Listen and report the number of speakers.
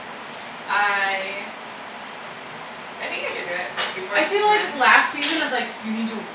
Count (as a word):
two